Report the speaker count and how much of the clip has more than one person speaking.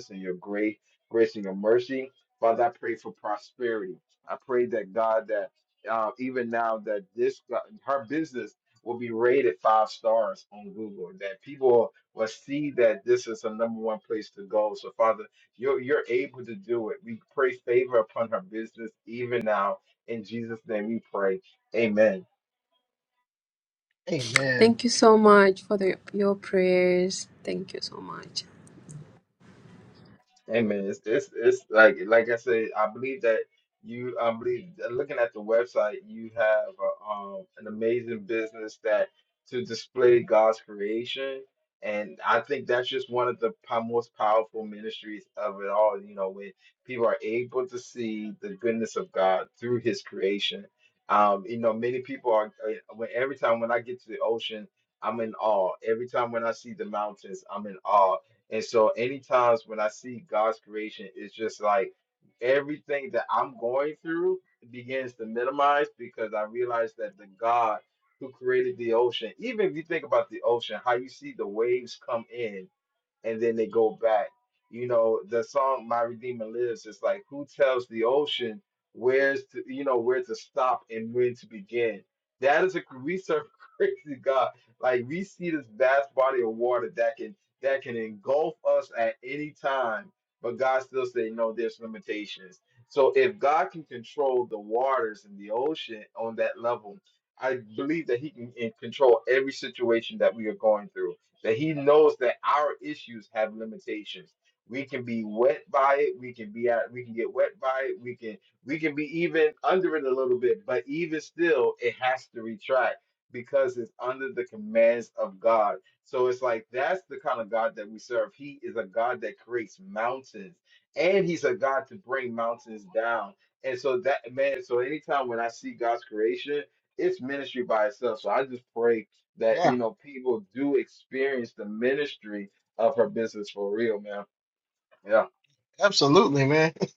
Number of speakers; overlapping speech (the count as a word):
three, under 1%